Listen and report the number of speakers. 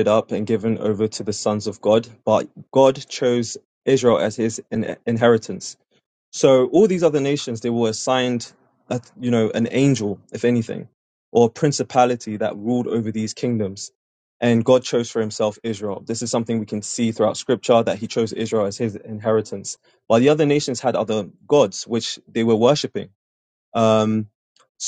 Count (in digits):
1